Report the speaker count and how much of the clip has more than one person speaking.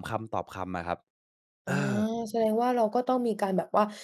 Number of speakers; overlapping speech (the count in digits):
2, about 3%